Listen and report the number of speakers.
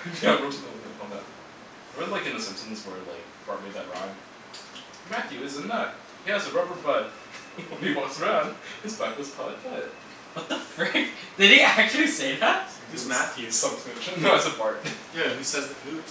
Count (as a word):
three